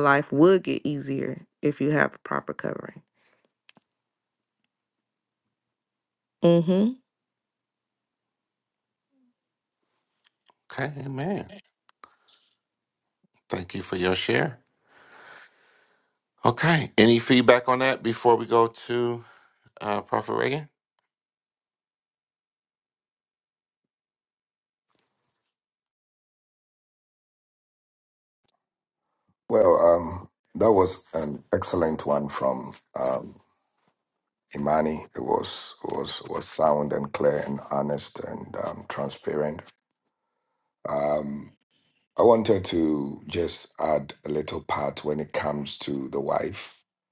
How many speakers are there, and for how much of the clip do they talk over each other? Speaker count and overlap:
three, no overlap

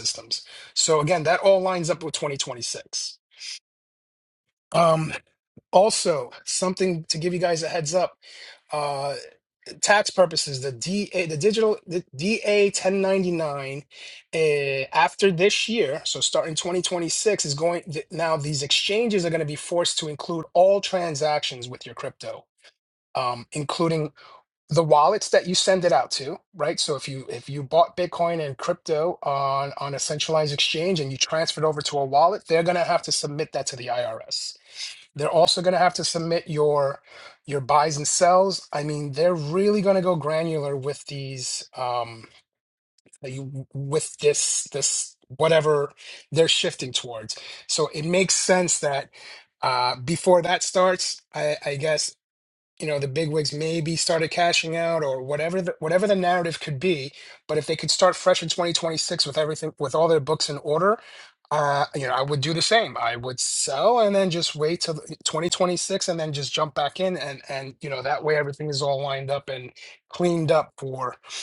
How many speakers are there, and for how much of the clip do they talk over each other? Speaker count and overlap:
one, no overlap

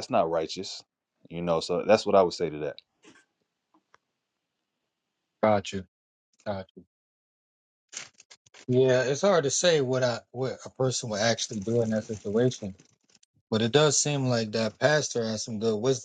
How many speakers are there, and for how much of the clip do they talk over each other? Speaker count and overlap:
two, no overlap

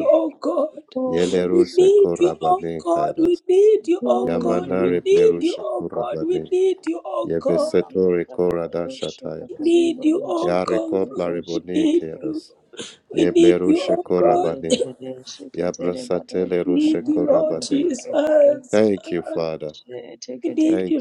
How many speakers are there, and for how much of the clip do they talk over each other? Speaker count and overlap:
three, about 74%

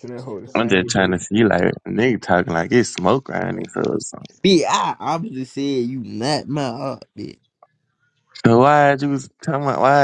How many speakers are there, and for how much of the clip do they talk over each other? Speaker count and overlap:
three, about 6%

